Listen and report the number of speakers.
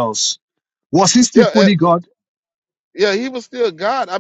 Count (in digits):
2